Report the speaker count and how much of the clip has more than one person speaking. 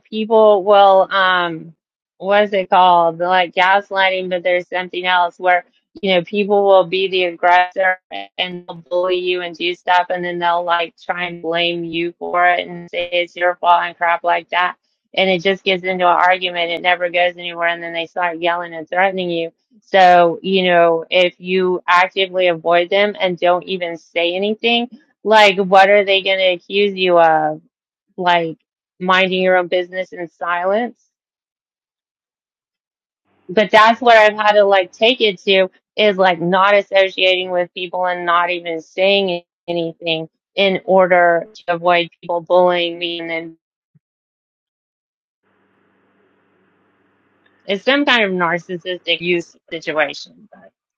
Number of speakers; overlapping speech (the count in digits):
1, no overlap